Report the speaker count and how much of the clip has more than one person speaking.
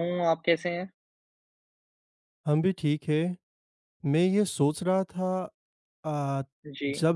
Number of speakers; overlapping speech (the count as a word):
two, about 2%